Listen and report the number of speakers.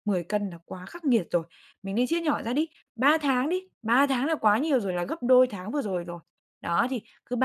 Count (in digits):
1